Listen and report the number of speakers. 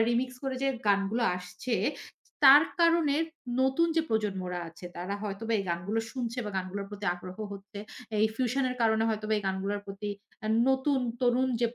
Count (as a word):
one